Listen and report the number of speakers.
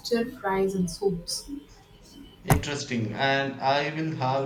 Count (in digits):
2